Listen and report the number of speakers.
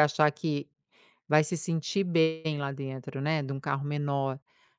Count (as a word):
one